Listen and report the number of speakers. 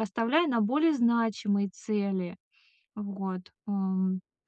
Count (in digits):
1